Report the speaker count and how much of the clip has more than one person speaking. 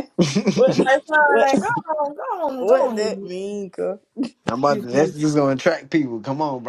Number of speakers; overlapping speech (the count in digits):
3, about 16%